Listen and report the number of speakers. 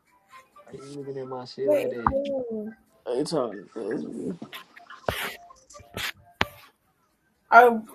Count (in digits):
3